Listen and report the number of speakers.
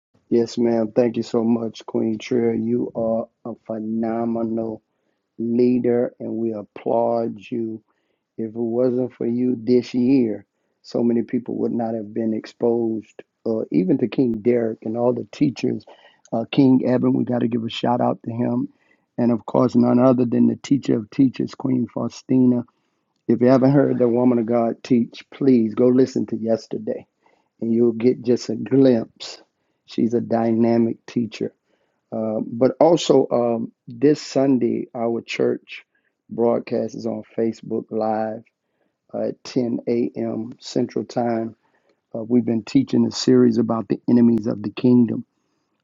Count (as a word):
one